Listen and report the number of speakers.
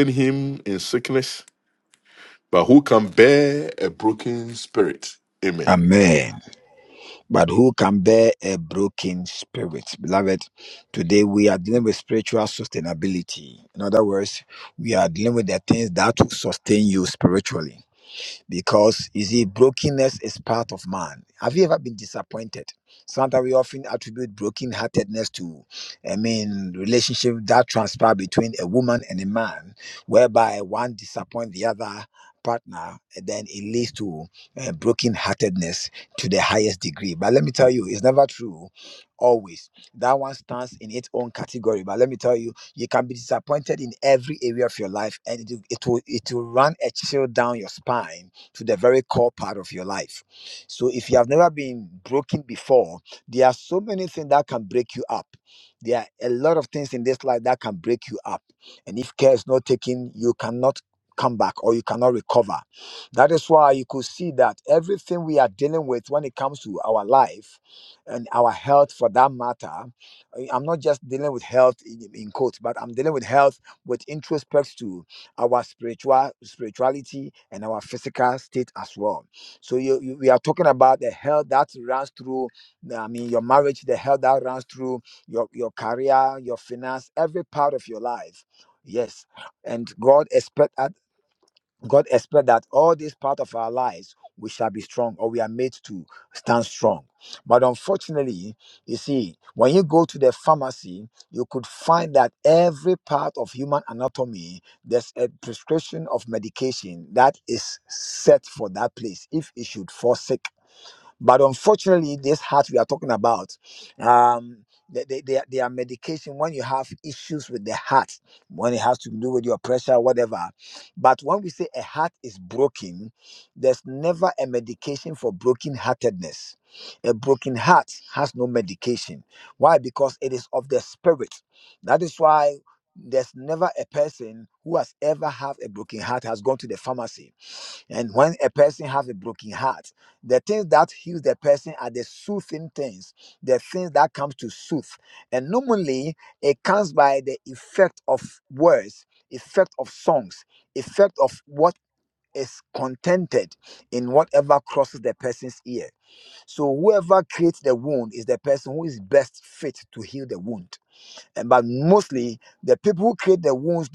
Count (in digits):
2